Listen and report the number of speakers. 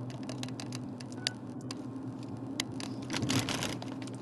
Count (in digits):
0